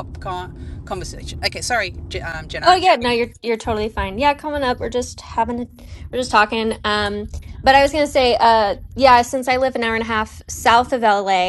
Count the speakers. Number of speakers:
two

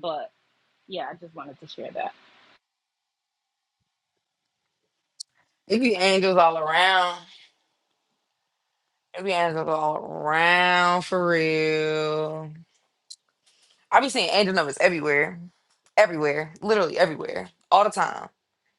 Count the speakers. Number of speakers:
two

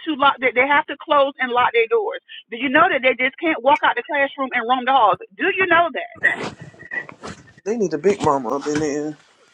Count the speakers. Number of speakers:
two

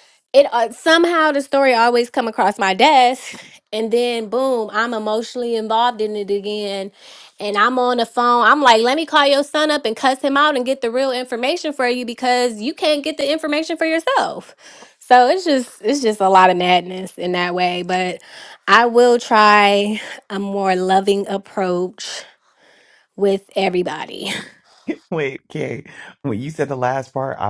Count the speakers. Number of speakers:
two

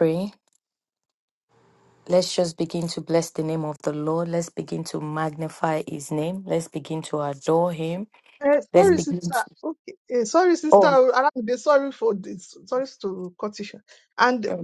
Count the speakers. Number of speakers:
two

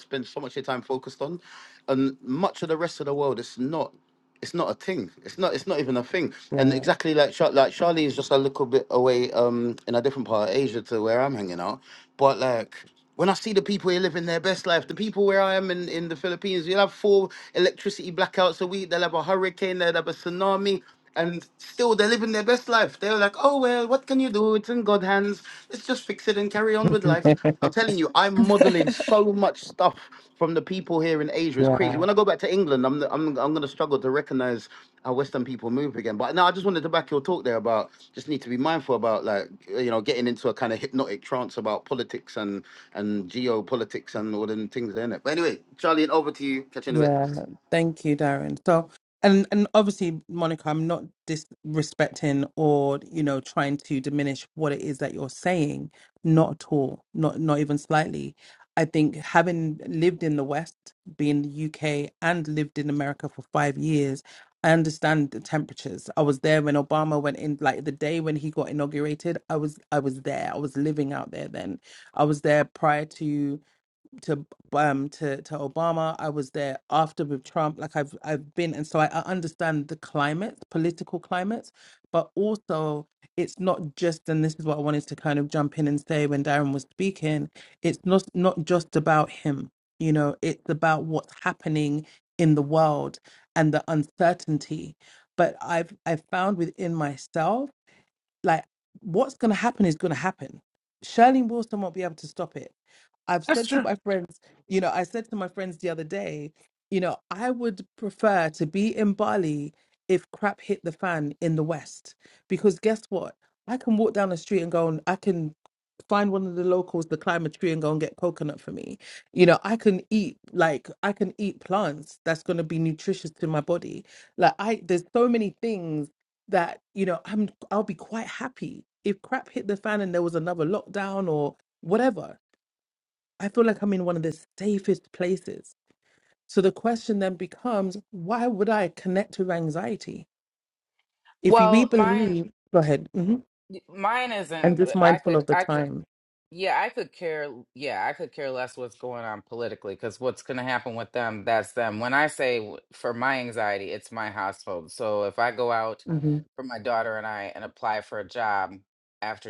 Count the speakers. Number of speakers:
three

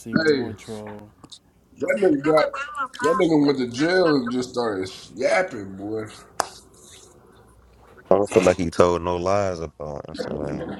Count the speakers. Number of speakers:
three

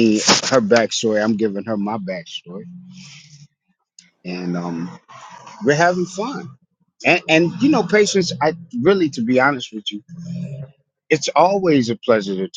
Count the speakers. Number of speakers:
one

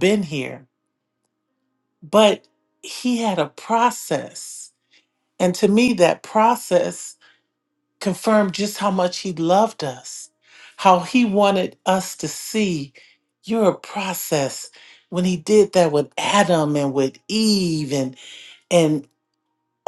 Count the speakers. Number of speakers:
one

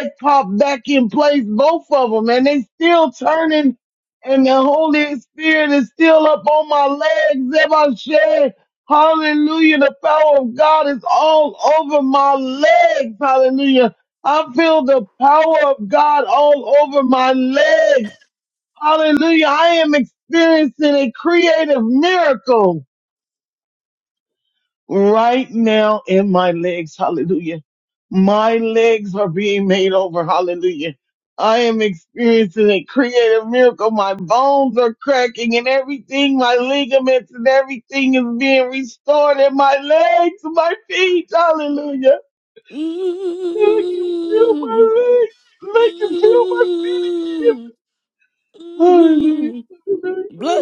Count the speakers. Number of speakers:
two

